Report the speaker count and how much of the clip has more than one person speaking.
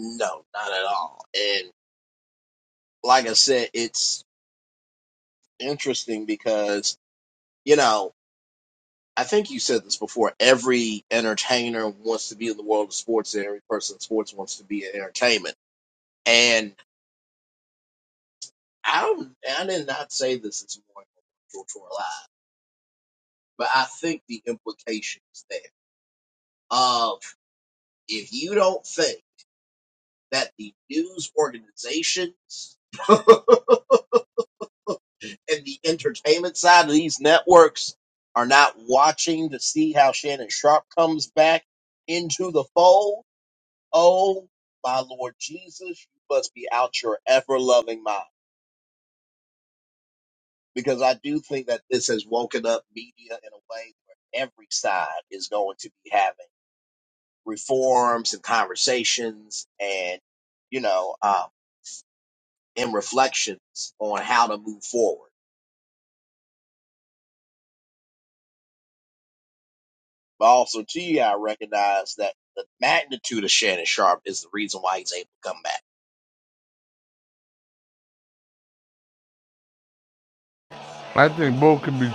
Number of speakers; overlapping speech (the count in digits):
2, no overlap